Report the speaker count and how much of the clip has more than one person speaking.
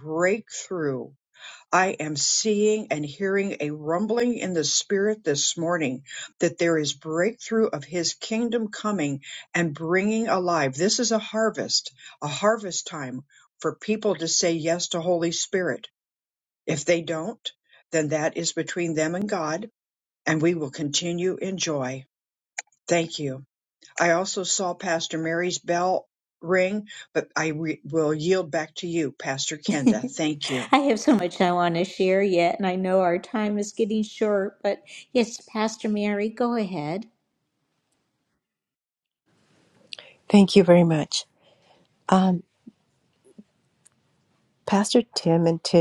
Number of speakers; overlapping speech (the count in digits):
3, no overlap